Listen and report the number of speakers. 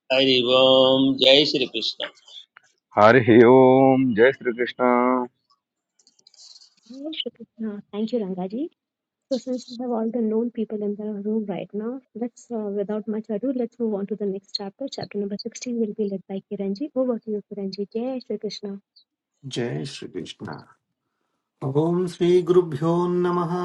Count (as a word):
four